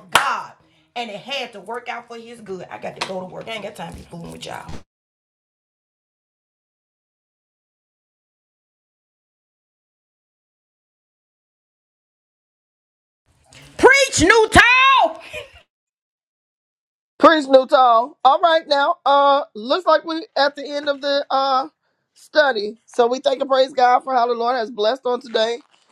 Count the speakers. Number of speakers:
two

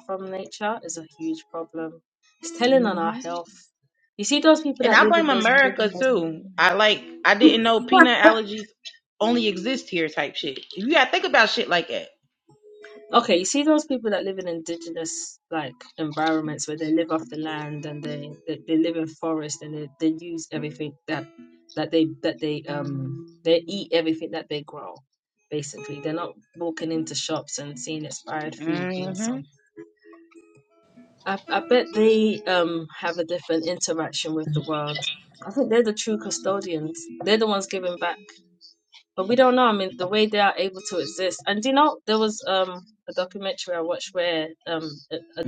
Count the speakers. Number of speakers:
two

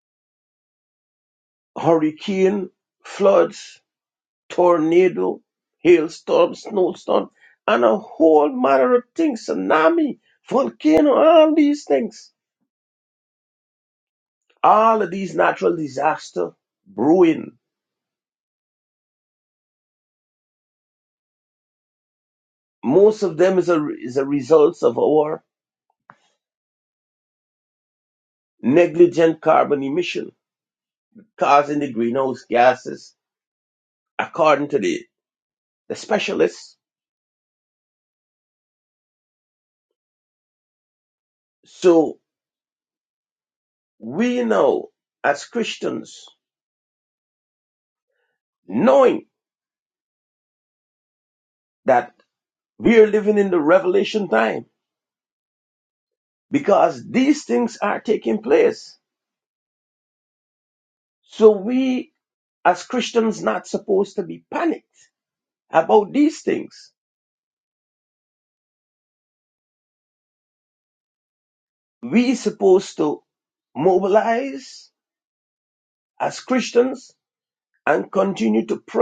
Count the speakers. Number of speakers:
one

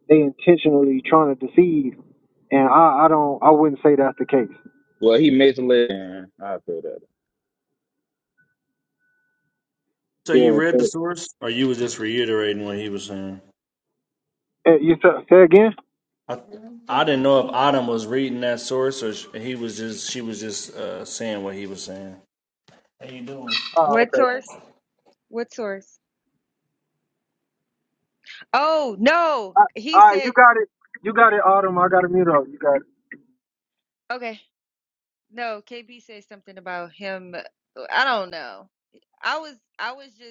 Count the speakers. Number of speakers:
four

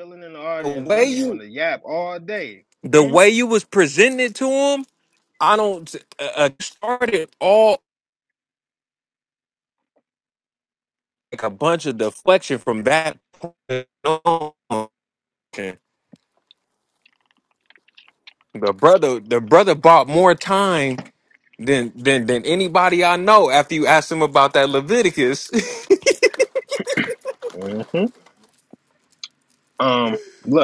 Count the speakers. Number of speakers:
two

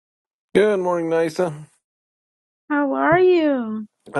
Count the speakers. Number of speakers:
two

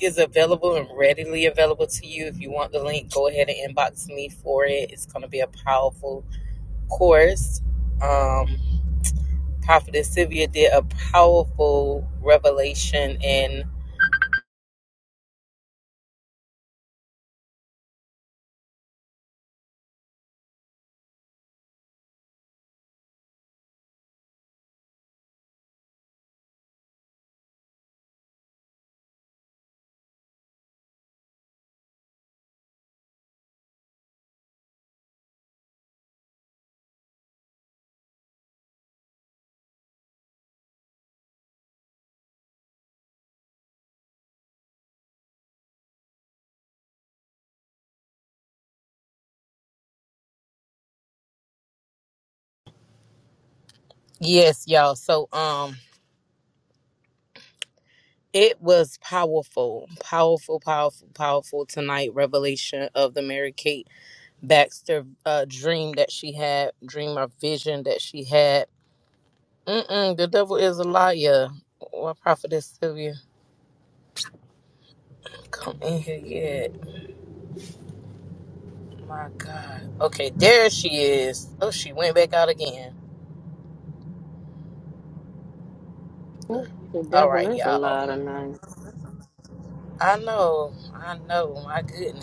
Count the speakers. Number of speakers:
two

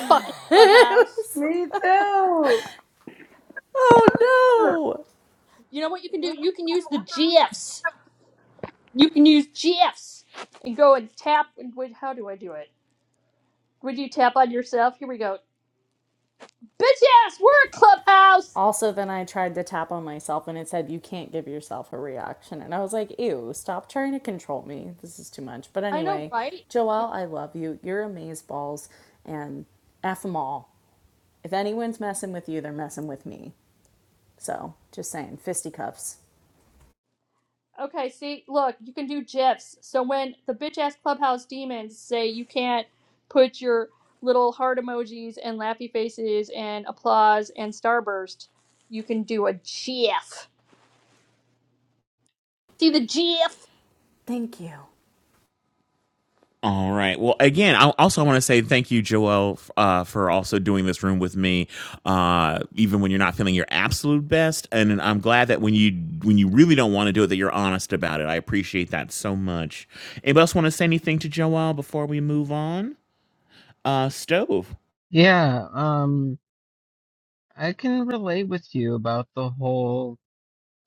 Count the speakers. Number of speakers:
five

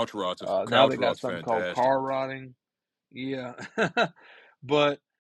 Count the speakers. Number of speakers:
two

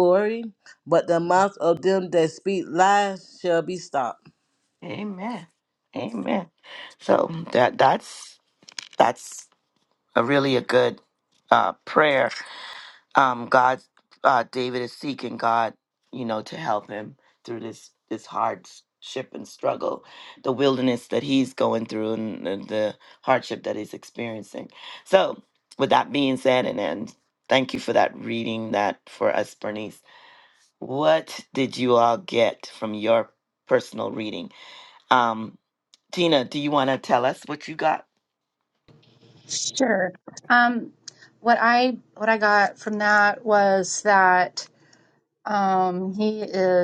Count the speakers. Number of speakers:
three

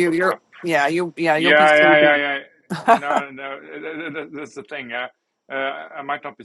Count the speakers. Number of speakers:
two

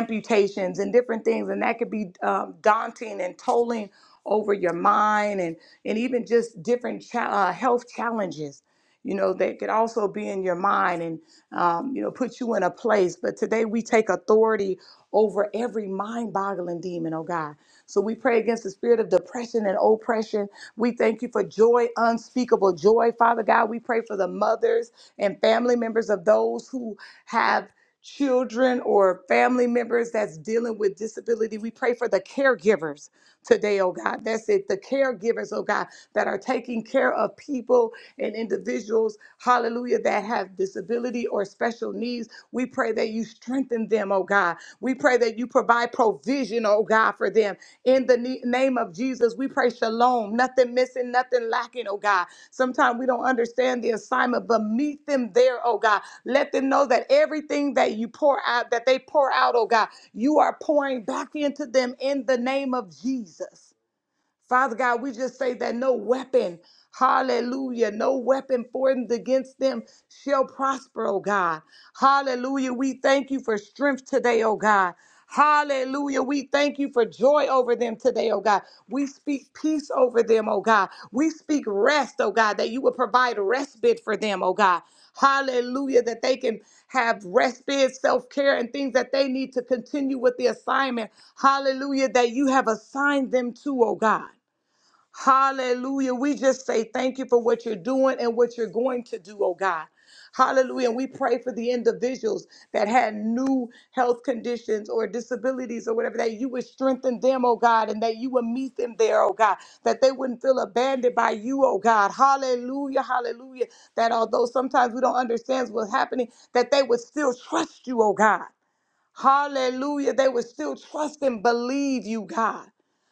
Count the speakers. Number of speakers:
one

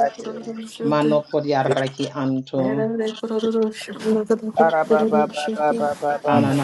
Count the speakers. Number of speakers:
three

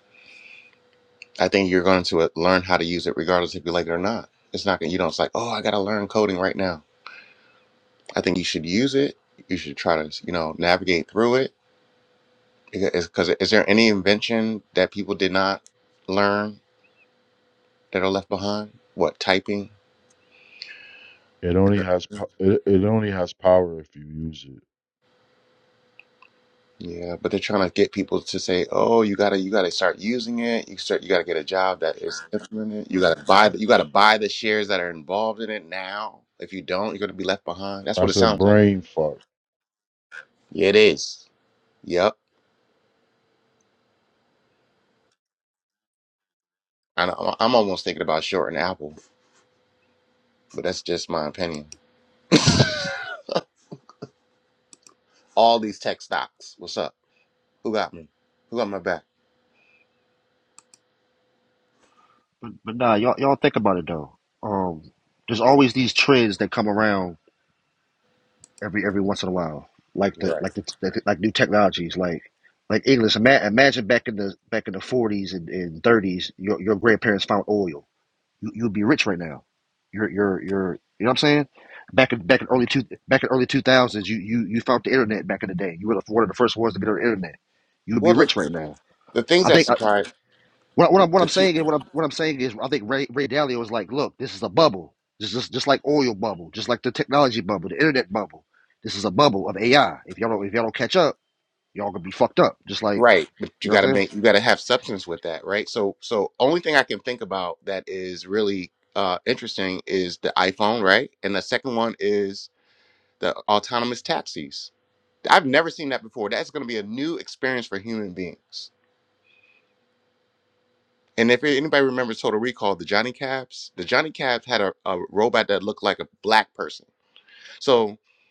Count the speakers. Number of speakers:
three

